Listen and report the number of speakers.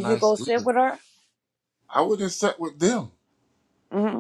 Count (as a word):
two